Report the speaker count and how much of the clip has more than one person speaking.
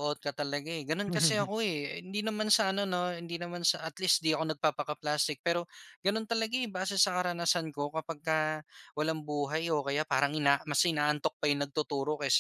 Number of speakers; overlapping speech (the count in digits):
1, no overlap